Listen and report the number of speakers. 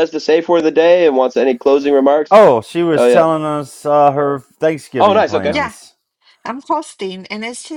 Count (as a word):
three